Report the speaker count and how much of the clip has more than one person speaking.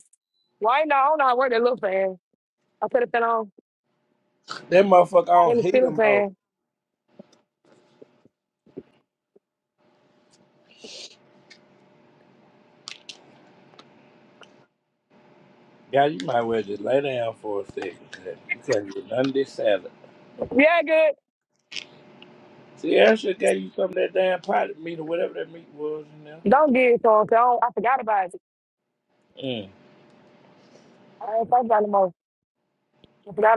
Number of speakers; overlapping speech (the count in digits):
2, about 2%